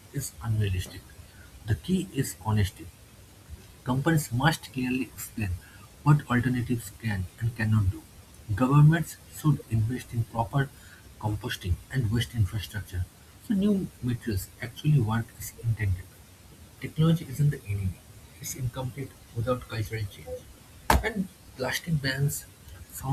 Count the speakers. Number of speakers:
one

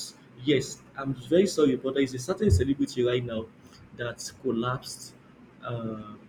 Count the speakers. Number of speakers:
one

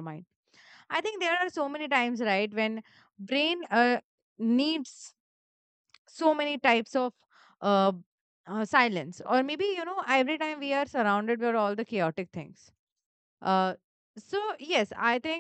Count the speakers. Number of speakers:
one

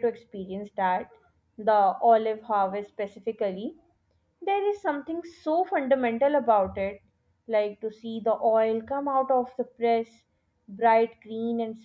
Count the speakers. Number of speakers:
one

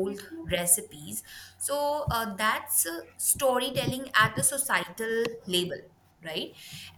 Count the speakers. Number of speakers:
one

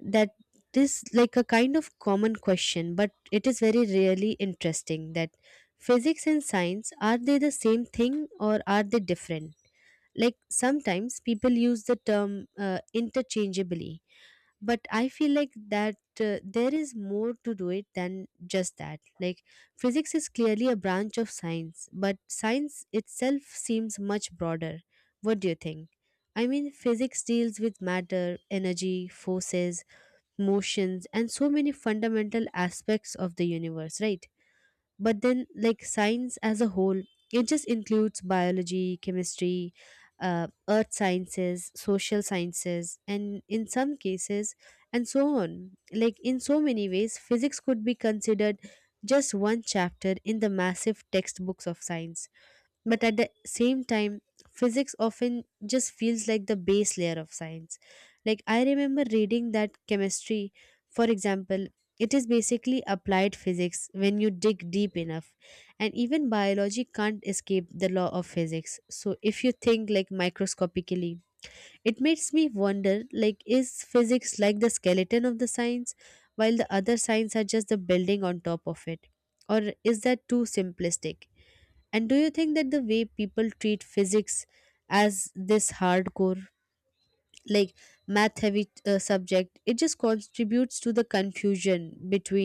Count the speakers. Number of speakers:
one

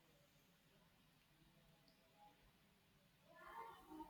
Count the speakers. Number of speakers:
zero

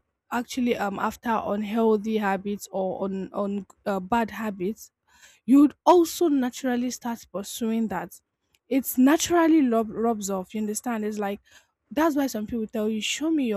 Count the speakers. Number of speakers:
one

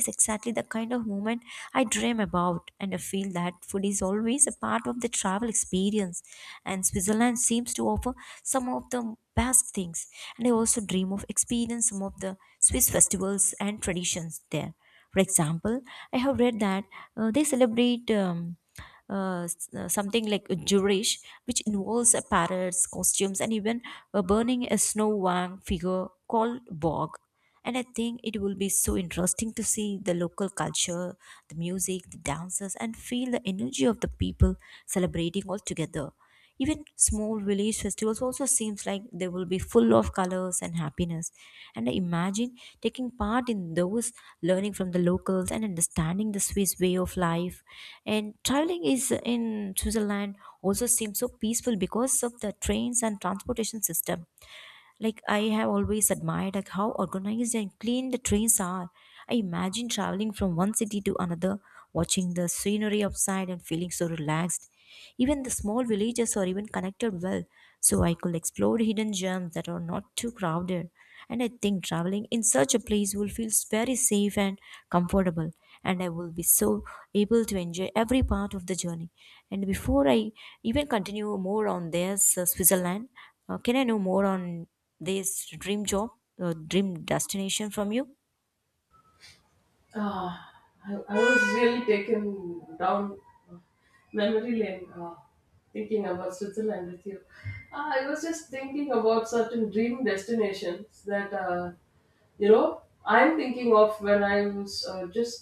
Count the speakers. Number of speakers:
two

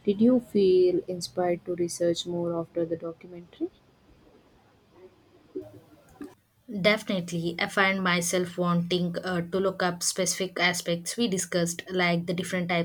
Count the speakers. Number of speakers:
two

